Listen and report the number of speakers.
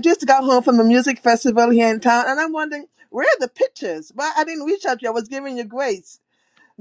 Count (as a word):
one